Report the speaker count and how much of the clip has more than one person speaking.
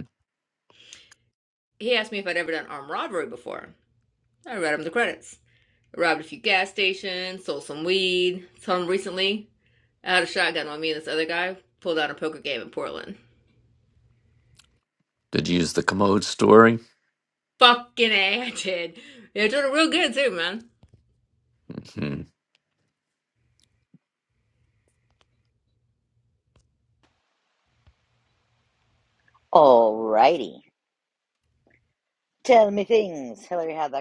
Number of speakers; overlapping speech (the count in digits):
3, no overlap